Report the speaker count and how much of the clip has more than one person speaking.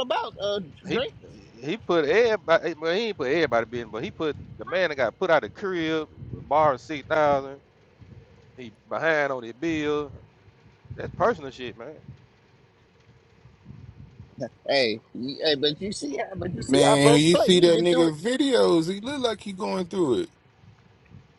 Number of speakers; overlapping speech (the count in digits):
3, about 7%